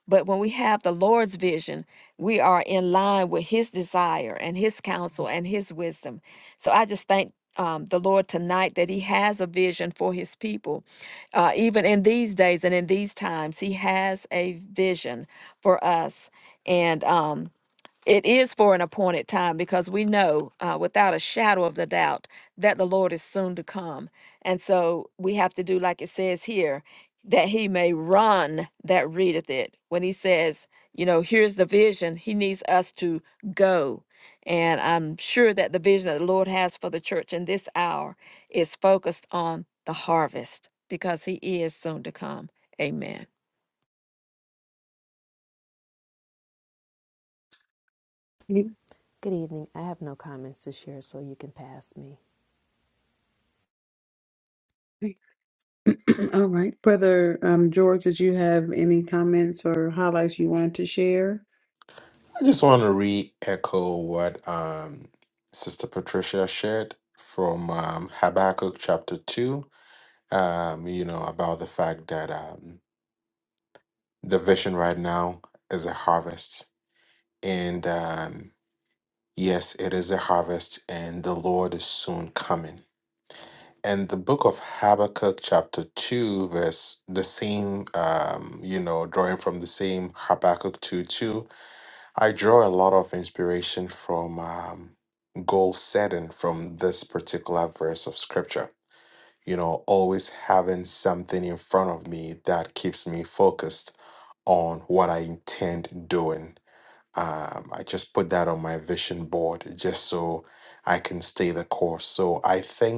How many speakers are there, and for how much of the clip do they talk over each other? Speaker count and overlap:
4, no overlap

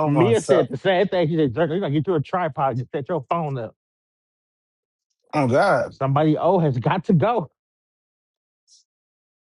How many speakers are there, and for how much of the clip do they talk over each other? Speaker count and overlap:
2, about 6%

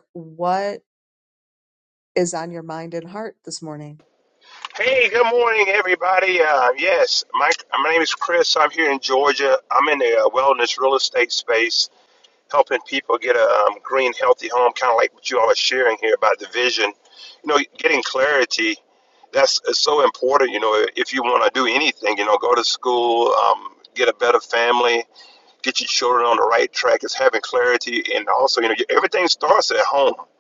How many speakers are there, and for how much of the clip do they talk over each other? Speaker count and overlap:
2, no overlap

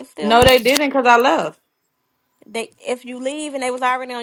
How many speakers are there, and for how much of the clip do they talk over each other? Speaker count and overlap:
2, about 9%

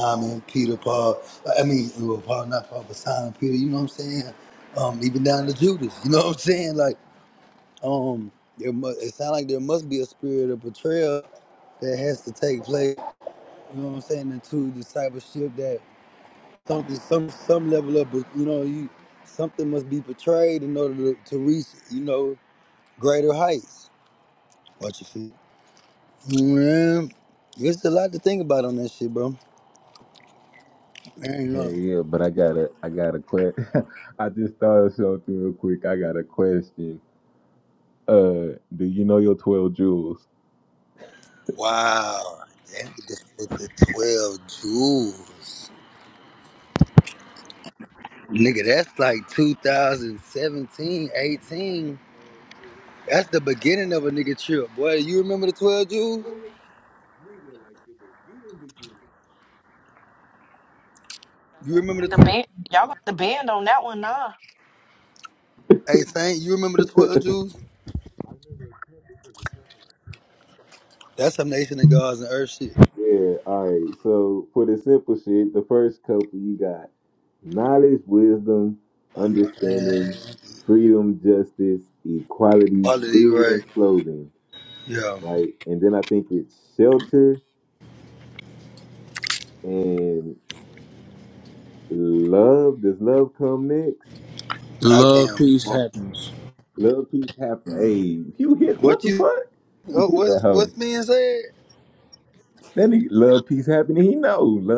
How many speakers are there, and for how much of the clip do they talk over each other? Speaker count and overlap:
4, about 4%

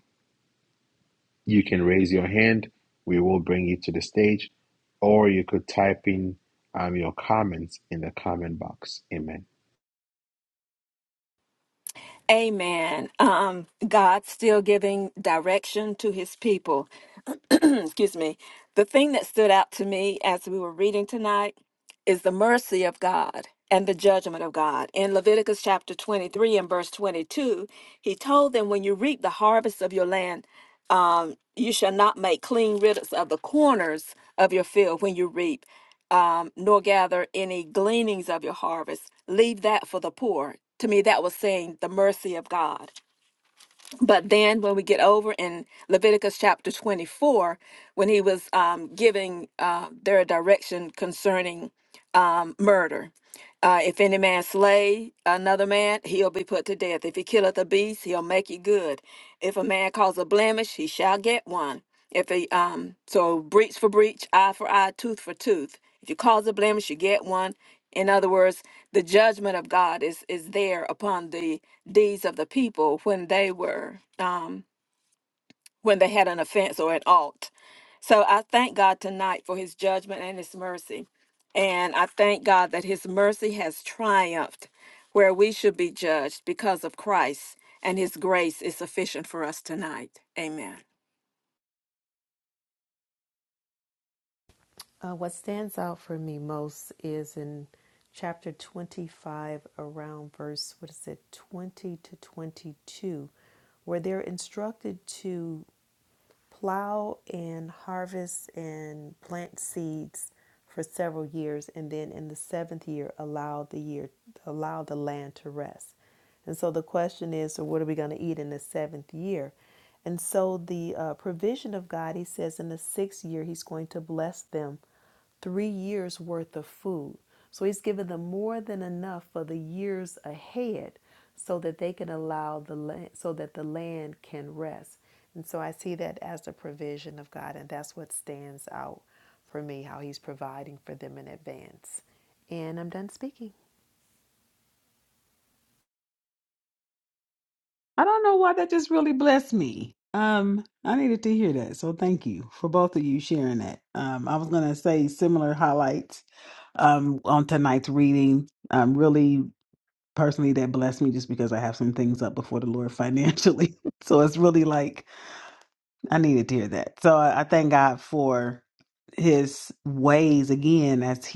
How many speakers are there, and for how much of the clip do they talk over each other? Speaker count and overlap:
4, no overlap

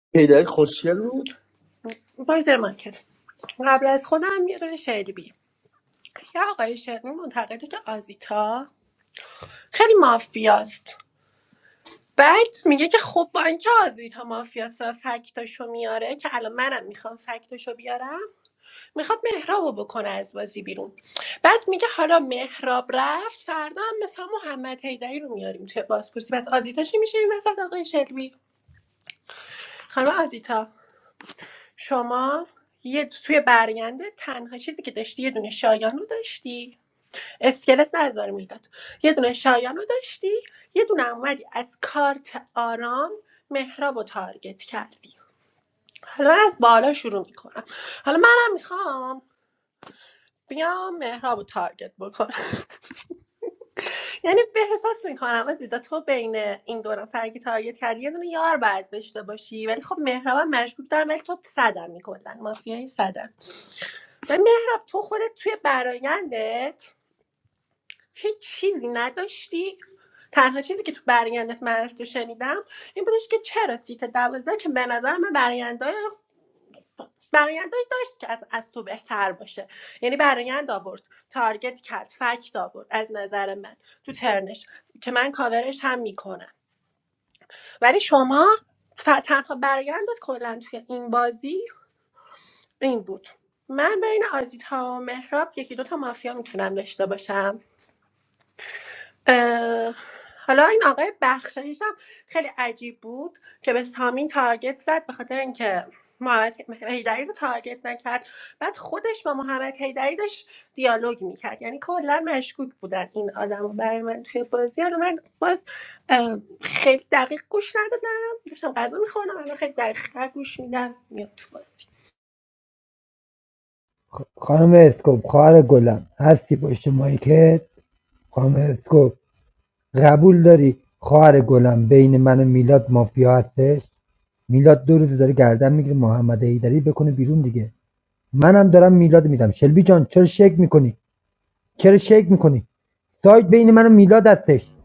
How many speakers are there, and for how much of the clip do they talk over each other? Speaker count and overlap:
3, no overlap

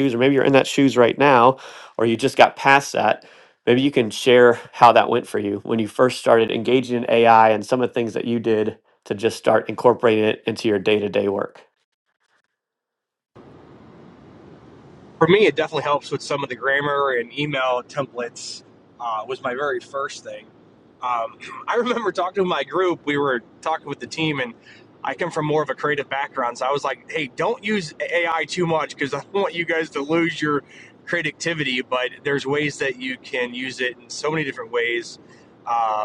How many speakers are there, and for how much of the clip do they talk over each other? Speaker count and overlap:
2, no overlap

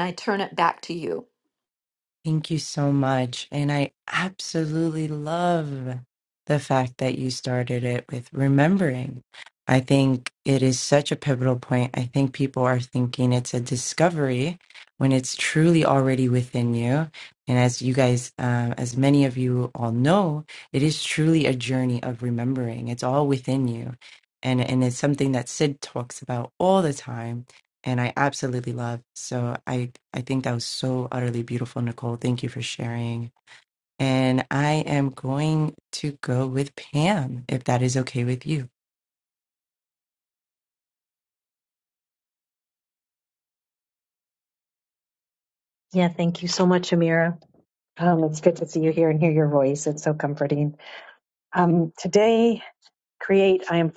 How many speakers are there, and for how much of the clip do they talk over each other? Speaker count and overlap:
3, no overlap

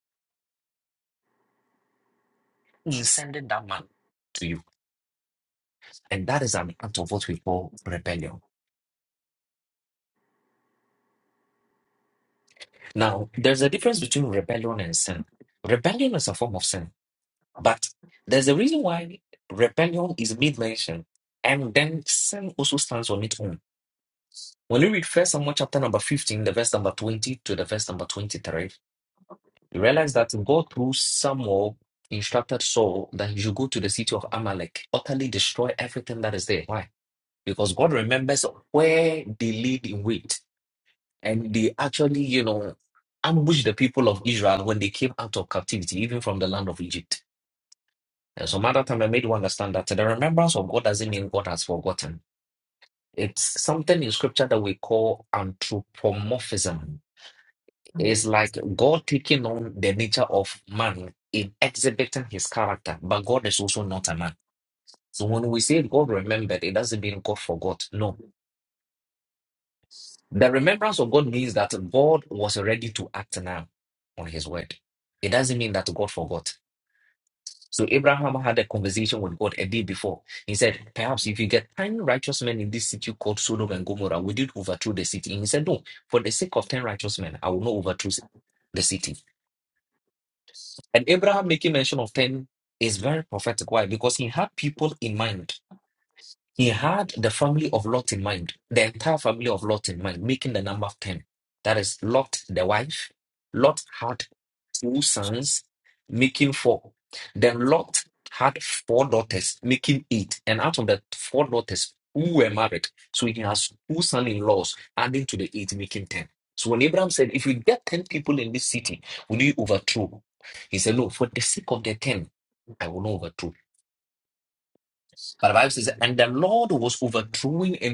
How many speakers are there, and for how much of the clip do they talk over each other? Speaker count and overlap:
1, no overlap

